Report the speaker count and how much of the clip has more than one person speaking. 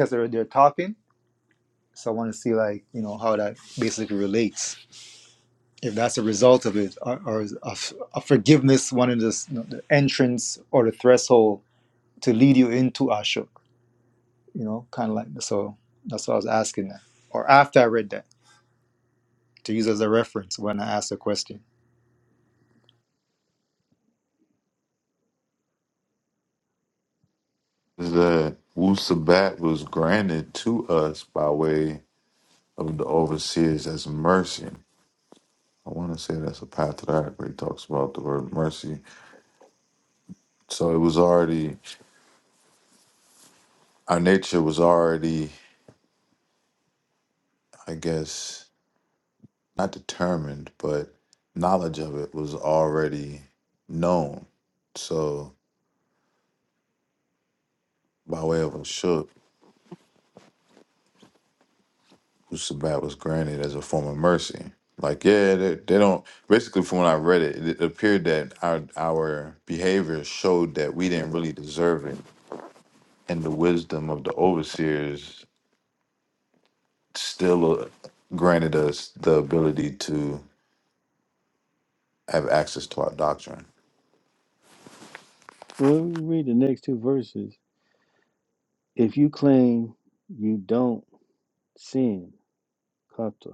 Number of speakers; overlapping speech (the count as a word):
three, no overlap